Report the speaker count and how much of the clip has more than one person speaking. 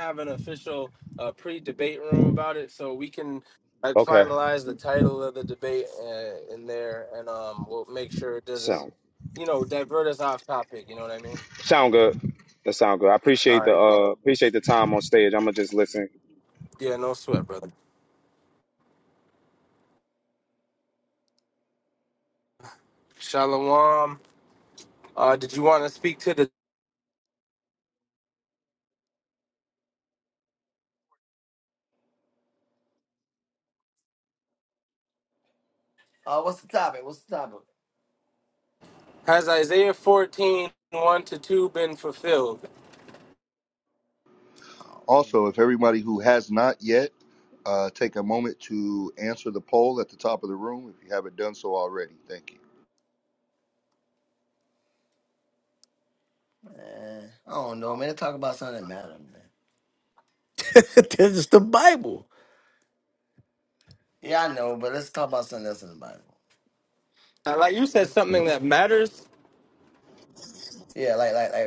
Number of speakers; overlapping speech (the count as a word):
five, about 1%